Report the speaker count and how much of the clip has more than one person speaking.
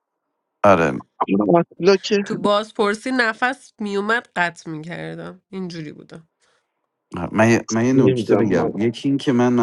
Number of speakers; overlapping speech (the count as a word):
three, about 9%